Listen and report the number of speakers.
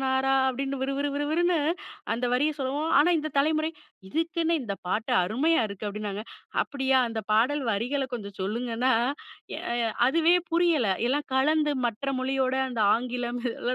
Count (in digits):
1